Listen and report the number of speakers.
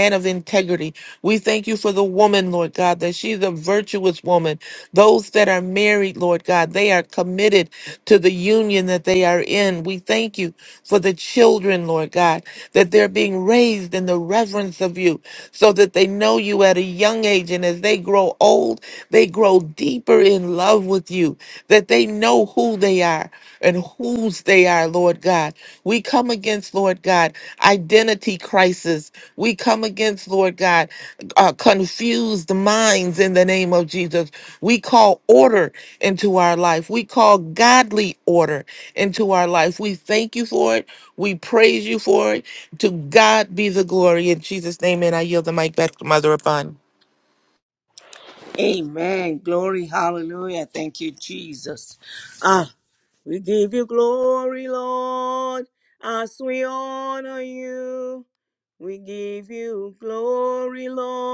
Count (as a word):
two